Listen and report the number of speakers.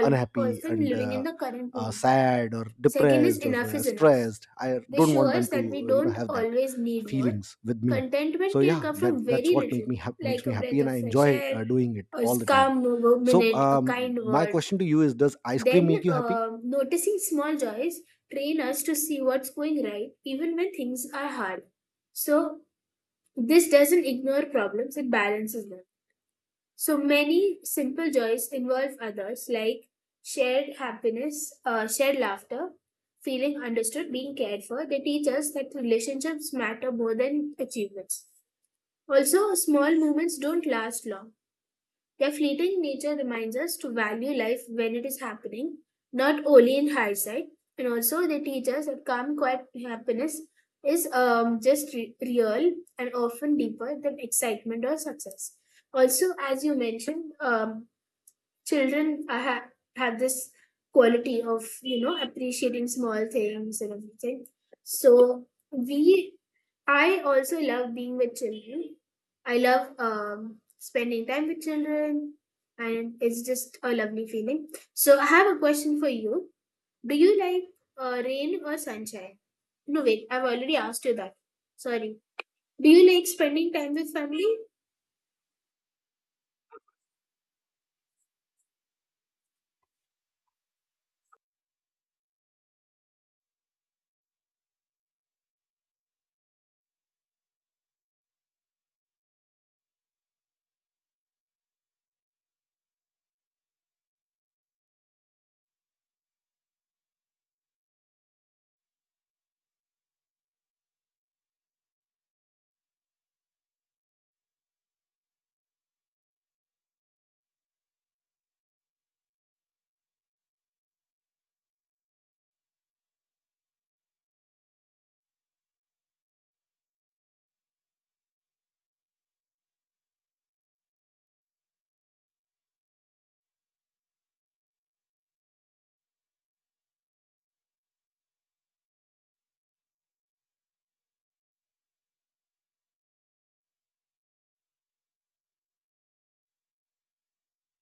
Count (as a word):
two